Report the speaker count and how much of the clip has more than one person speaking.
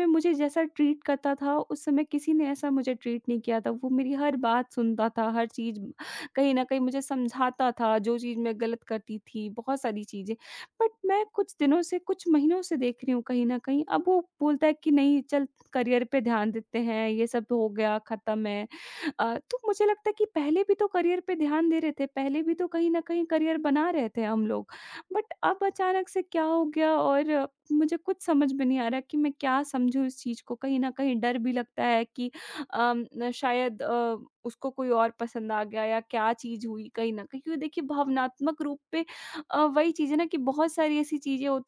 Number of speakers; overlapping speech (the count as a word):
one, no overlap